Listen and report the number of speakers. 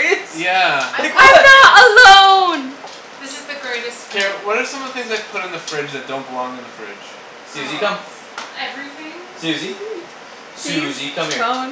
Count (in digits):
4